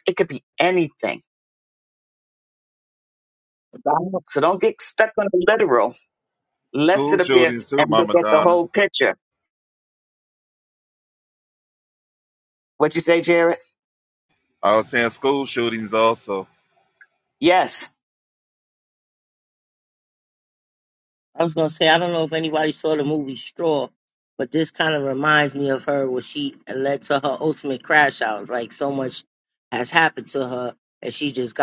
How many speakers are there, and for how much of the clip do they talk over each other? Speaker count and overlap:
three, about 5%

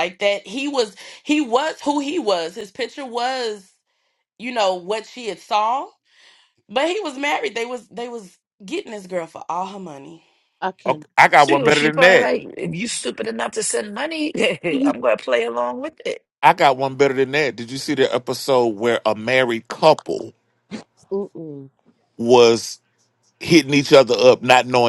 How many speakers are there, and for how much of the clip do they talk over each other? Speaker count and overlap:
four, about 5%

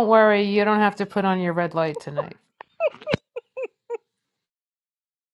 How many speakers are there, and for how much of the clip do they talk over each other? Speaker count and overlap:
one, no overlap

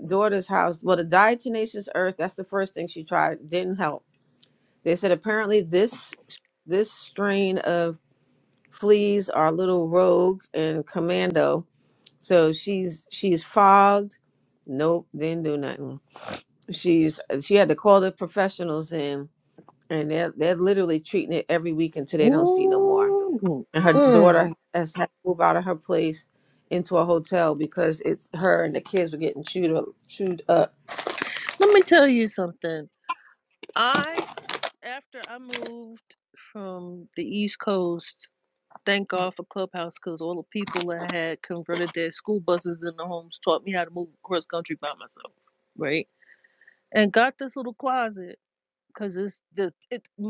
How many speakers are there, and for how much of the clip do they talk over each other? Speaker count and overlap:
two, about 3%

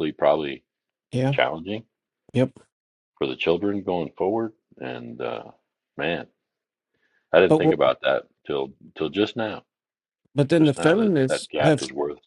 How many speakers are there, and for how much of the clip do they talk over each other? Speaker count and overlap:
two, about 13%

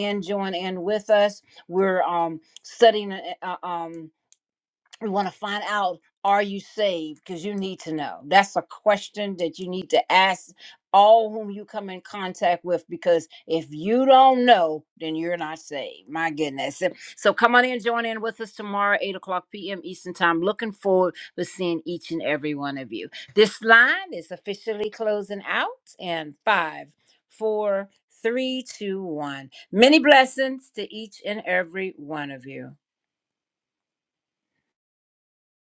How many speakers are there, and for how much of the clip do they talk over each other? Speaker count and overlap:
one, no overlap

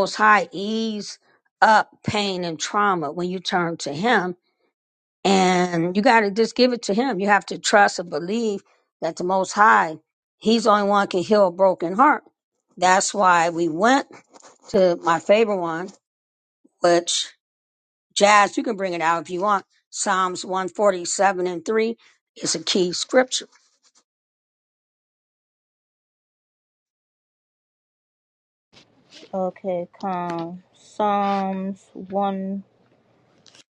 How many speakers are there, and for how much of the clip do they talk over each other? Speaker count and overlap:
two, no overlap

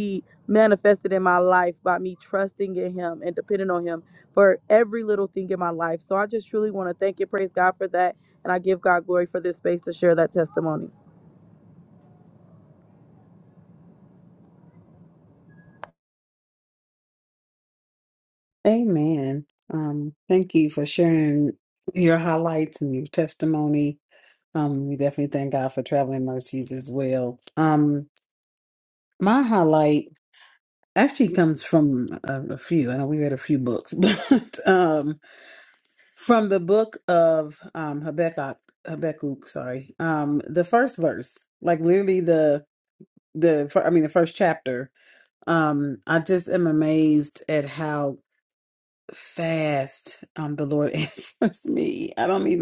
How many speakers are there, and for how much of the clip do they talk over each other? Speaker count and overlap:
two, no overlap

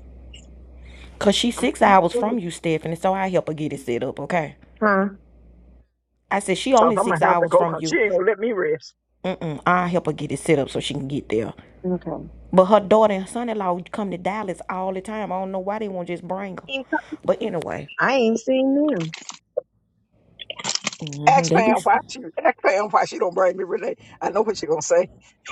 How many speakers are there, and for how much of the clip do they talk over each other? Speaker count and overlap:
three, about 7%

